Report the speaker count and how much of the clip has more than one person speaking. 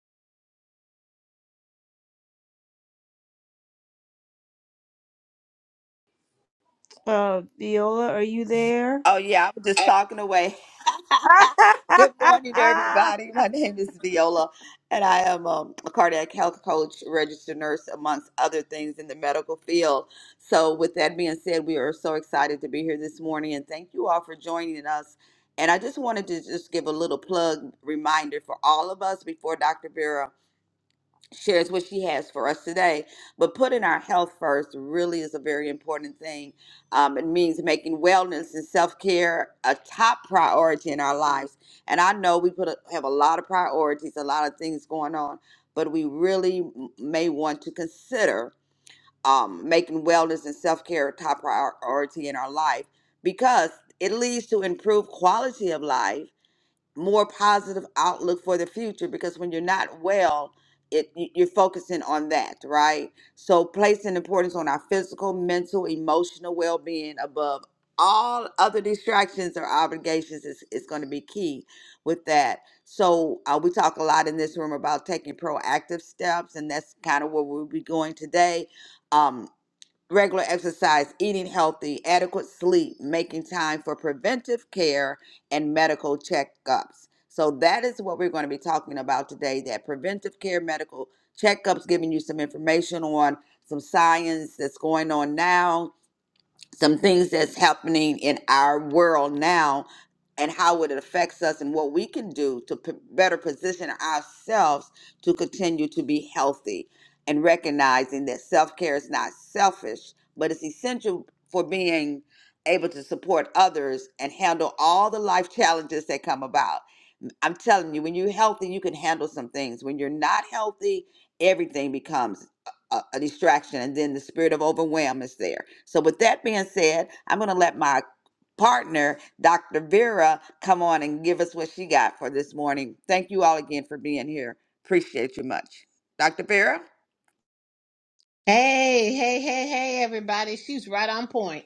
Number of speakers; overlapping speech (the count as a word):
three, no overlap